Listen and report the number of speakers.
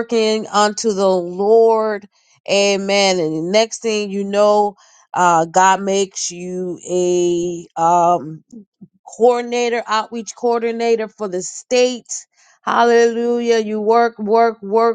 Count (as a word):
one